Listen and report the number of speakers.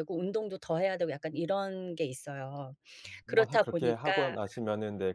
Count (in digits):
2